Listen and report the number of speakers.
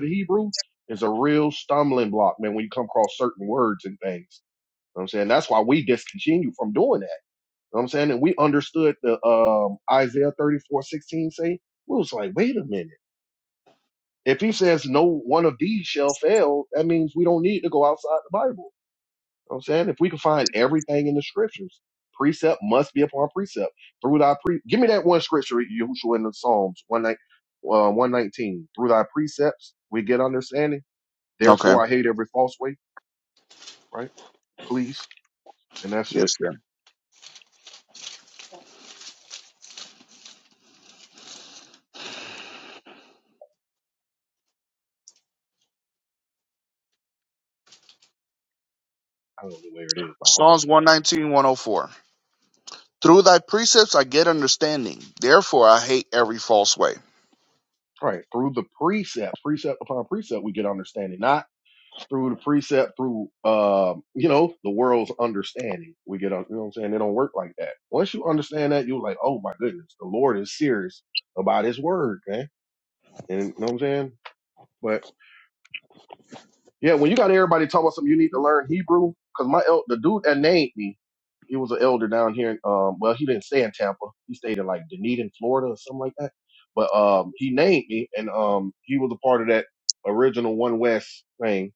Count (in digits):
2